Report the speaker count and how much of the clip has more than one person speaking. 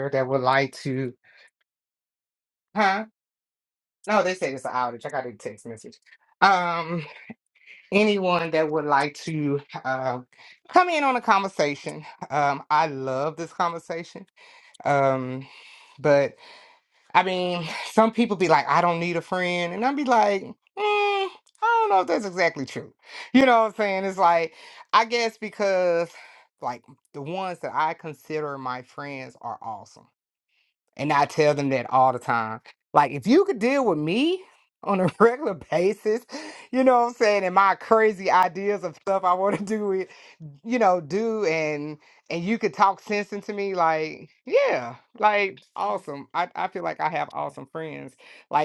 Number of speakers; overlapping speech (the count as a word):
one, no overlap